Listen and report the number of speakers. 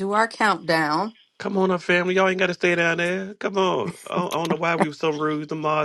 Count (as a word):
two